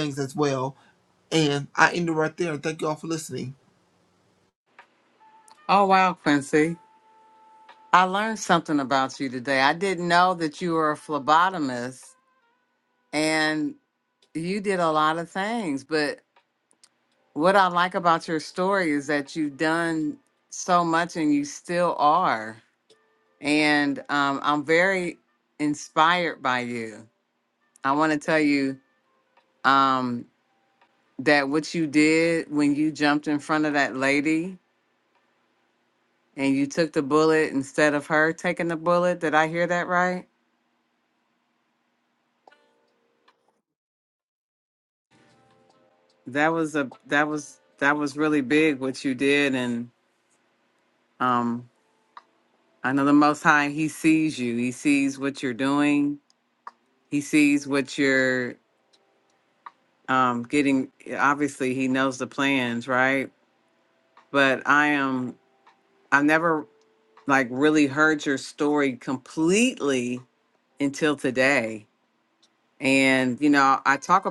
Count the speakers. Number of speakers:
2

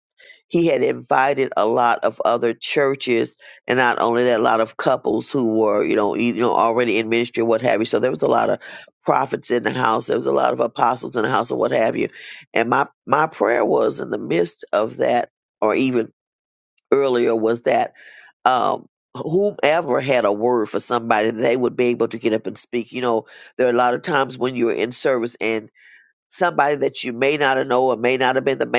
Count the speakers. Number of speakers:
1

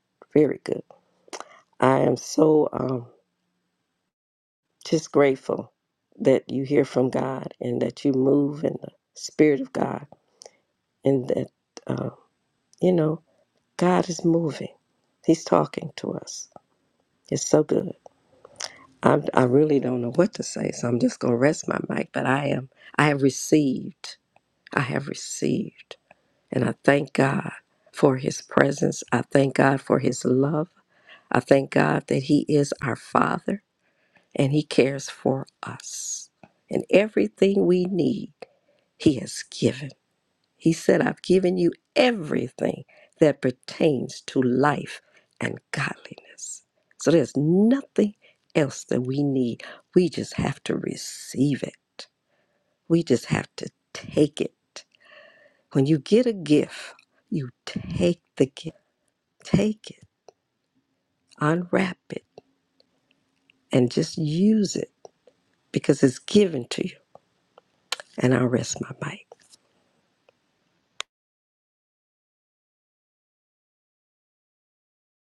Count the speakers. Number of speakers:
1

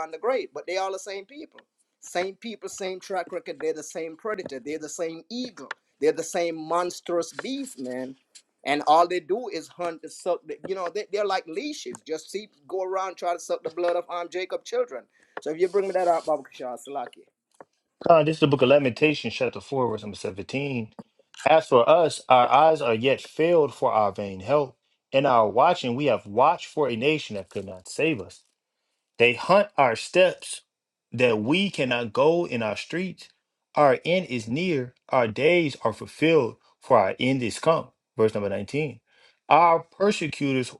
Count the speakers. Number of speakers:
2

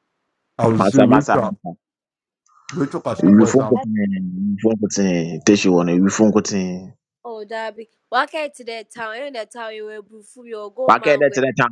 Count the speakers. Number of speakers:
3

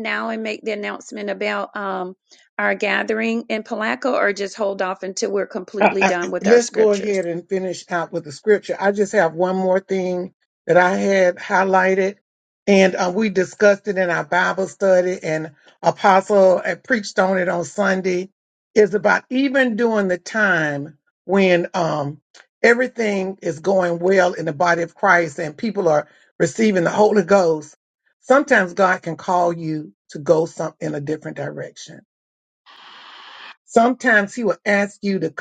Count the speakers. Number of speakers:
2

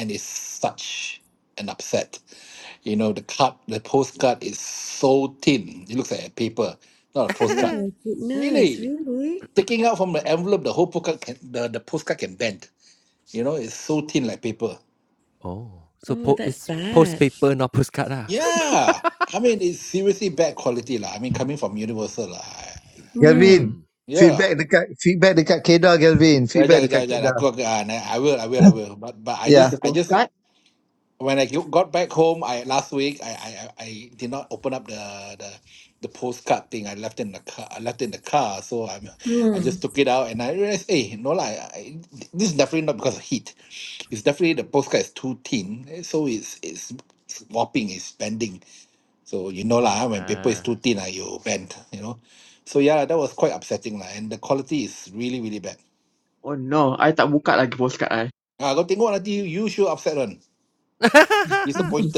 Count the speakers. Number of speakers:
5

